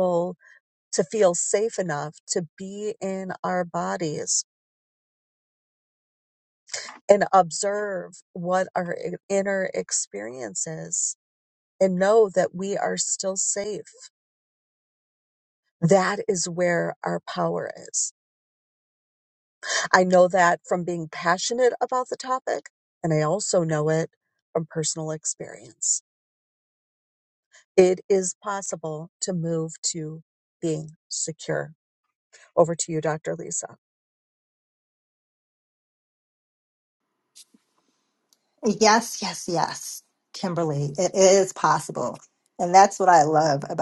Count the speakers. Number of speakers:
2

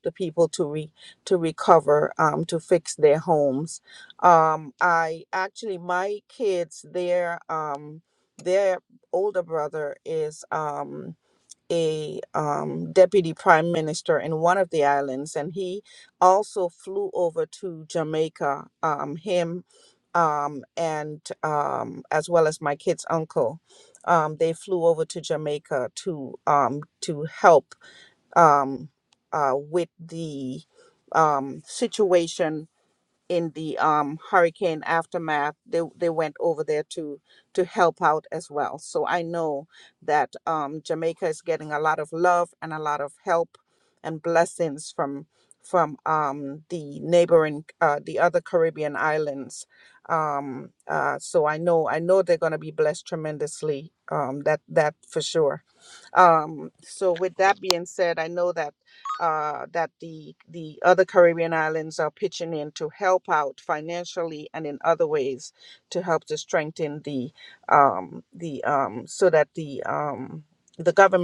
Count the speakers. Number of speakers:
1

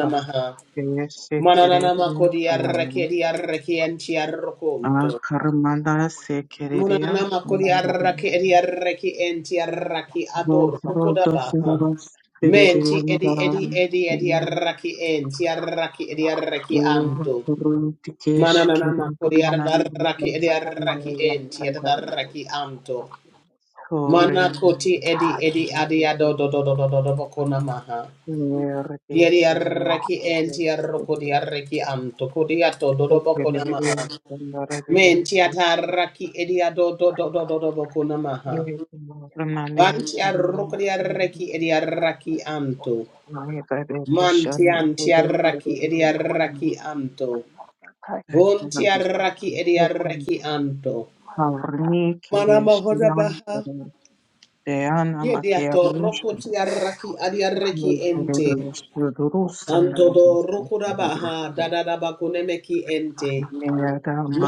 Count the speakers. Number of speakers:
3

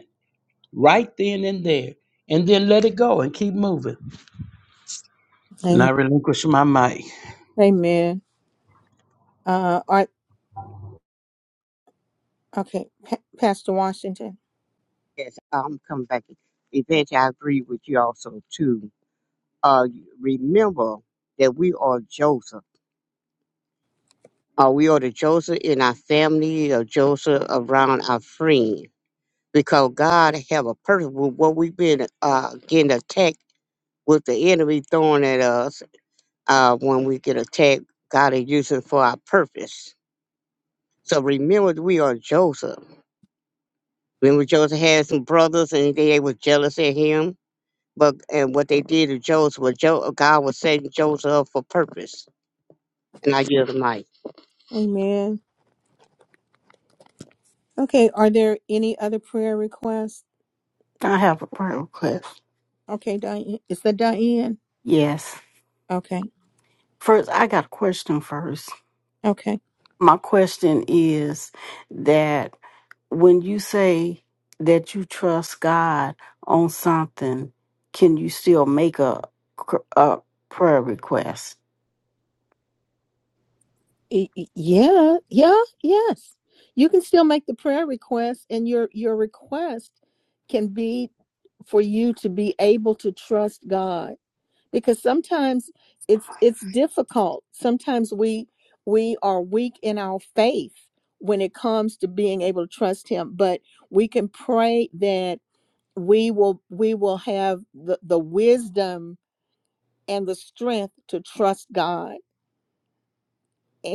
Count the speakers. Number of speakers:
4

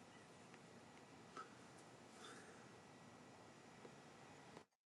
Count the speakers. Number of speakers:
0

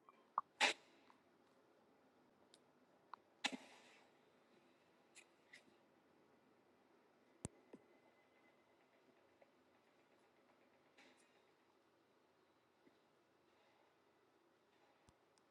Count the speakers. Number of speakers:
0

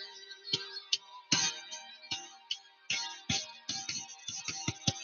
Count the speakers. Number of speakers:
0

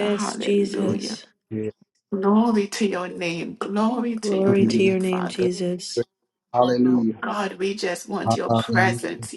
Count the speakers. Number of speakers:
3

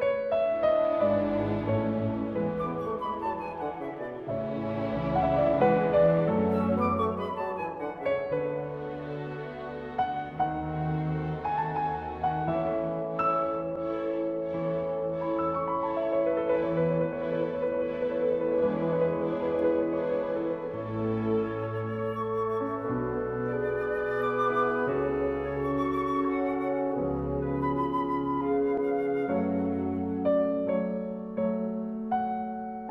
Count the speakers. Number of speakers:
0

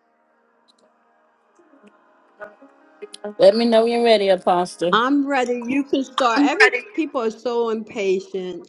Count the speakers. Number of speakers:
2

